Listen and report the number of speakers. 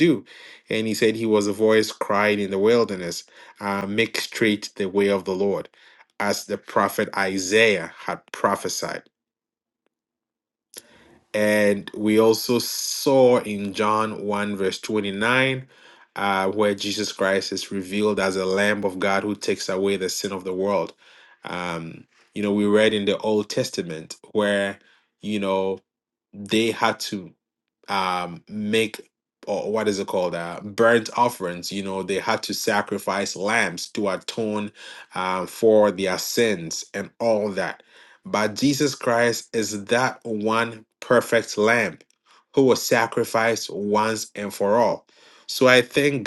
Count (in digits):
1